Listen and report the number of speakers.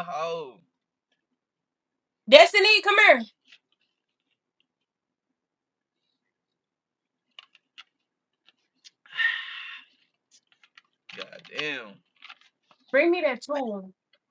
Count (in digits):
2